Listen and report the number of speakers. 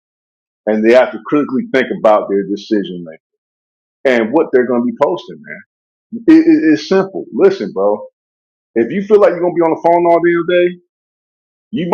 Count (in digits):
1